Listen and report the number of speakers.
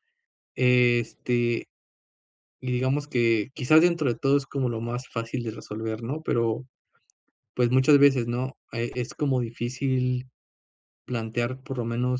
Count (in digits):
1